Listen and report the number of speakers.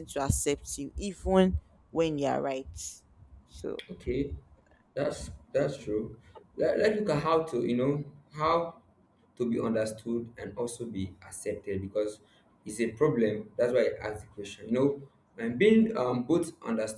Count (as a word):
two